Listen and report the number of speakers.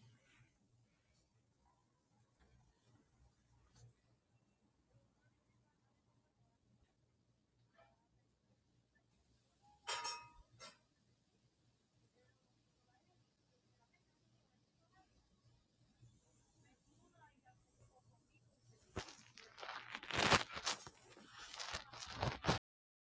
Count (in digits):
0